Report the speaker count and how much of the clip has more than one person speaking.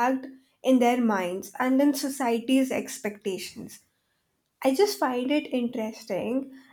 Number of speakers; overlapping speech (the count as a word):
one, no overlap